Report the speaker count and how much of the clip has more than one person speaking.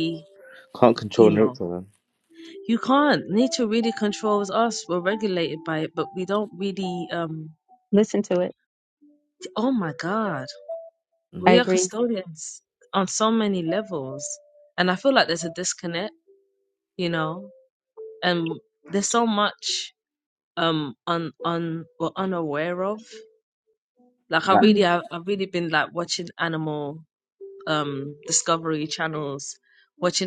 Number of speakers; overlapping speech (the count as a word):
three, about 4%